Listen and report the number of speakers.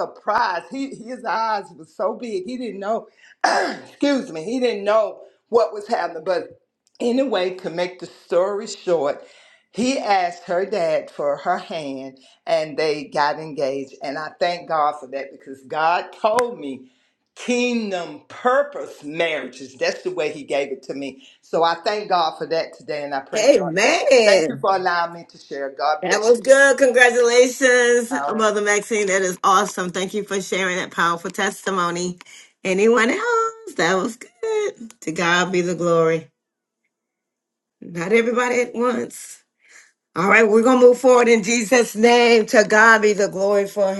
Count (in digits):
2